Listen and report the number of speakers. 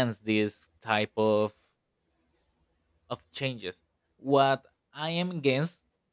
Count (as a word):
one